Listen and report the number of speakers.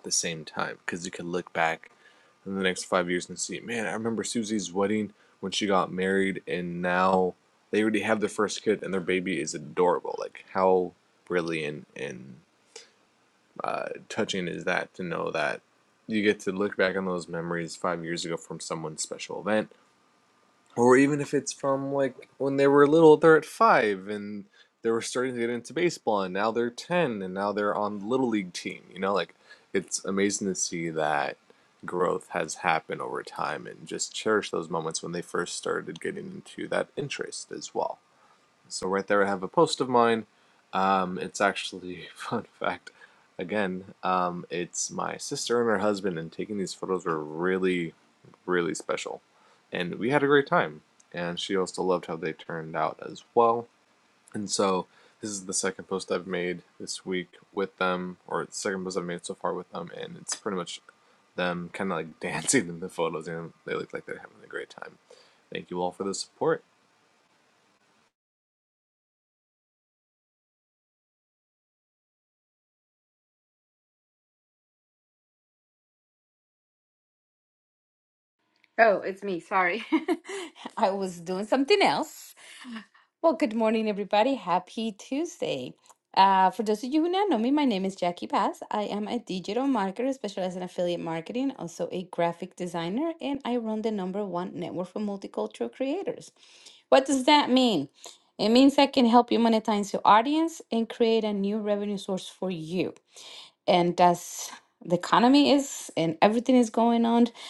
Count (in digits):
2